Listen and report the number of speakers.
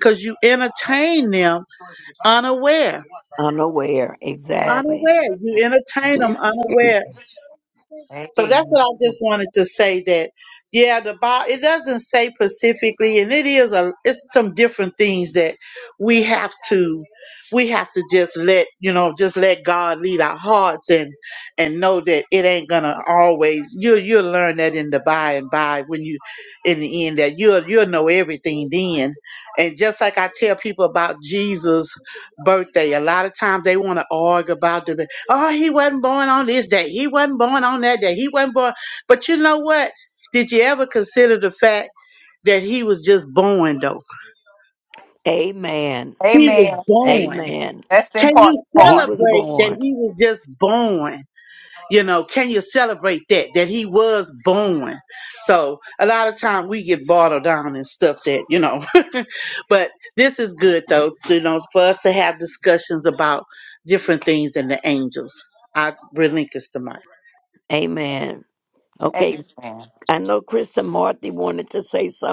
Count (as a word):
three